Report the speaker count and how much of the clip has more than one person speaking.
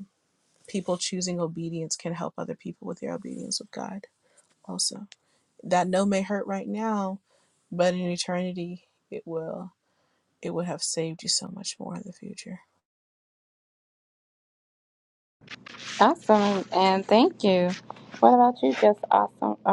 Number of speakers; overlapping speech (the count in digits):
2, no overlap